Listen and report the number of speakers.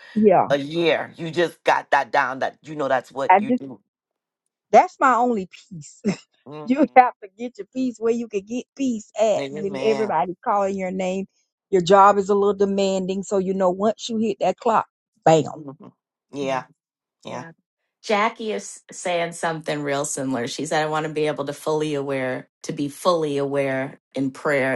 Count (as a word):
three